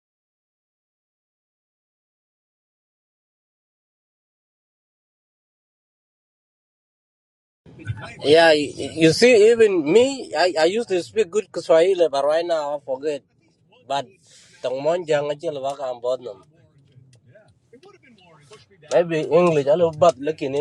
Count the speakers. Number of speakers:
1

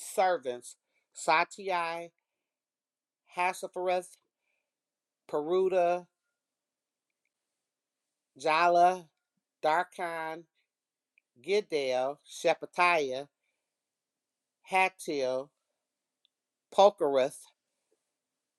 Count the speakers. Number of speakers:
1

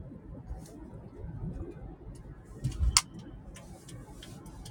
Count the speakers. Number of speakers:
0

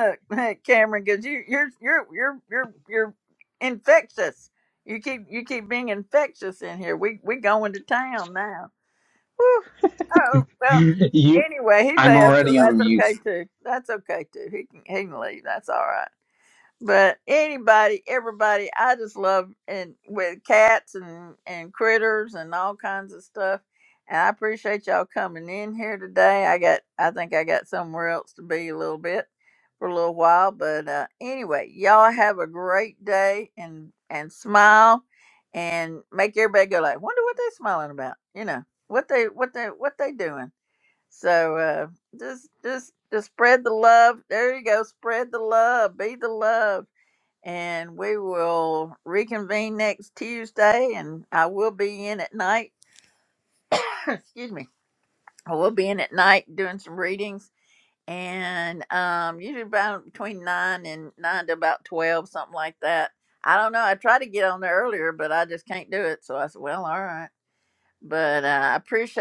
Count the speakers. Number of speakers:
2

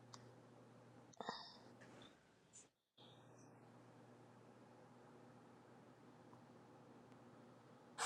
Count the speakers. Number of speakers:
0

